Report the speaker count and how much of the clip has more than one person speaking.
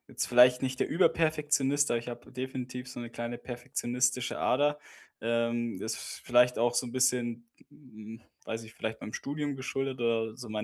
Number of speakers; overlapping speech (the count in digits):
1, no overlap